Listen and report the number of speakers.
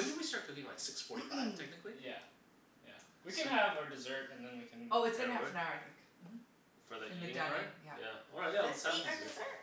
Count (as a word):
four